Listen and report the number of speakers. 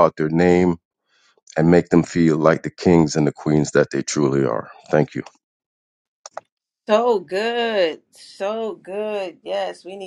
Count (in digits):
2